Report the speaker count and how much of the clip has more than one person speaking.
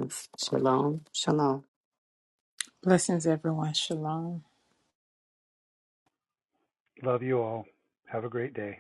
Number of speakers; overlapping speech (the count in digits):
3, no overlap